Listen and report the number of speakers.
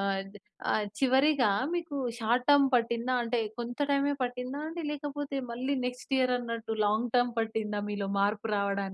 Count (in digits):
1